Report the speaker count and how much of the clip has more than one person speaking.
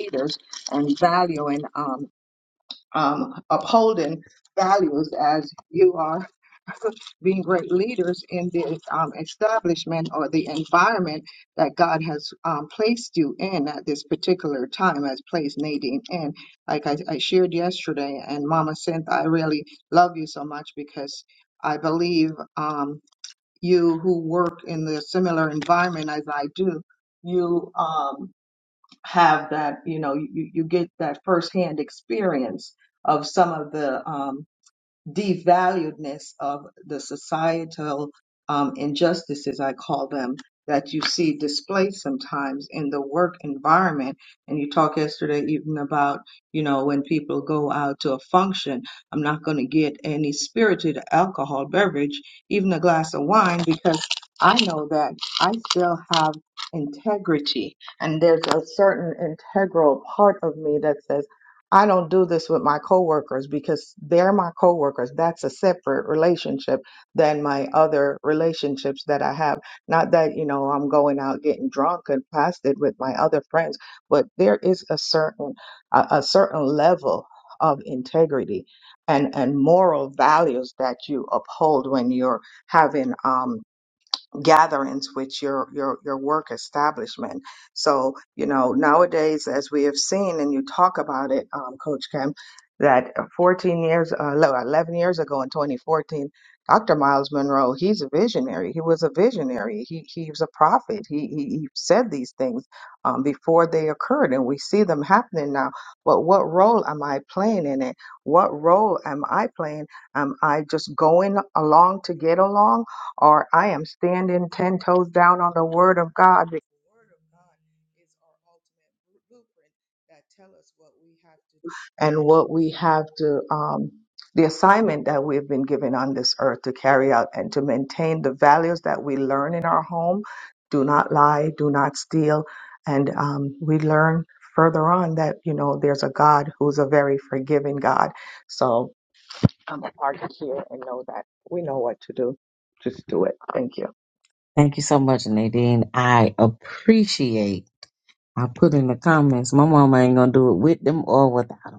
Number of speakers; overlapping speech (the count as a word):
two, no overlap